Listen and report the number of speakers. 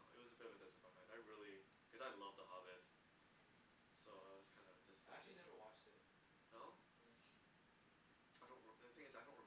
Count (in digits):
2